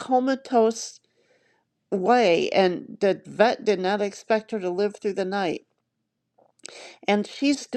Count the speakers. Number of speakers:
one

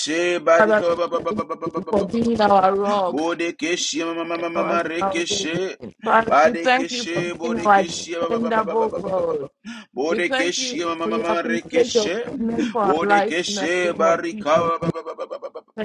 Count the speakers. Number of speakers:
two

